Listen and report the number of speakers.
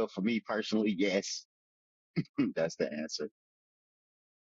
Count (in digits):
1